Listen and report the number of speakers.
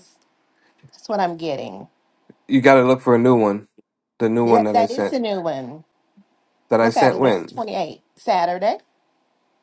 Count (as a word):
two